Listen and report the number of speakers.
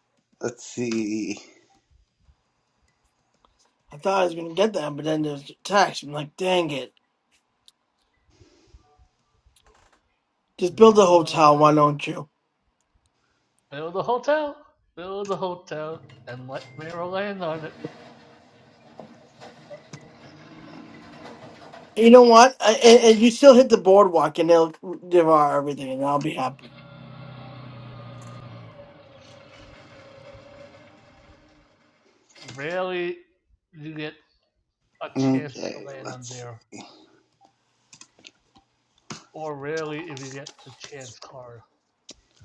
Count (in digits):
3